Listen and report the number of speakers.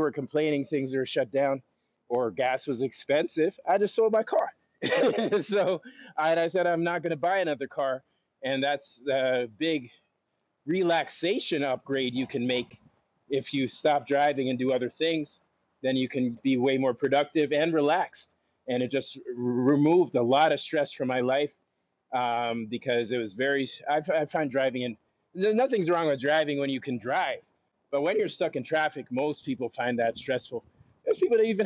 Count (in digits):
1